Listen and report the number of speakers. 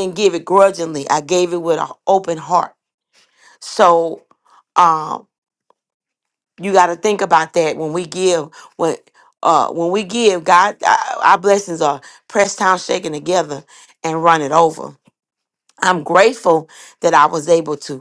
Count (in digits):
1